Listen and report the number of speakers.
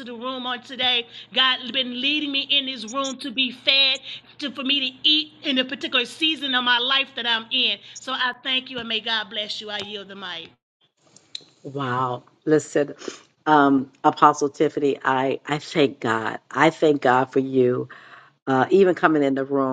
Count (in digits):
2